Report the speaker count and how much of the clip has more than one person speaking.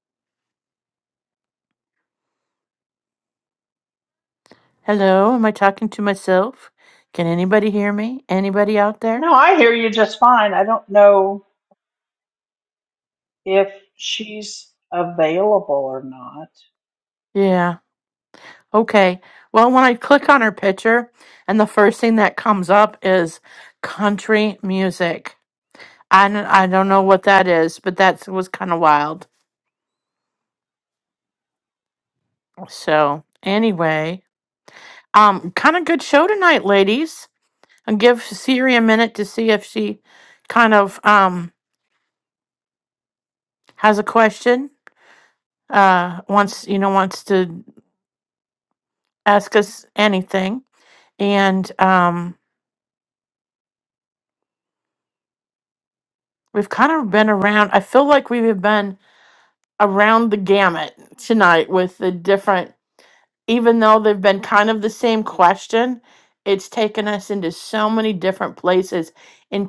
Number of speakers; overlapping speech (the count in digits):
2, under 1%